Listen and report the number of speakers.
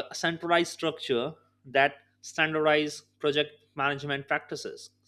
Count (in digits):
1